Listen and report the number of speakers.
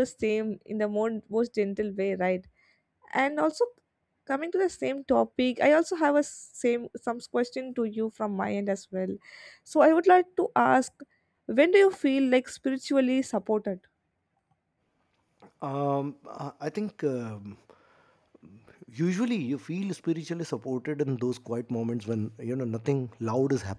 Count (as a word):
two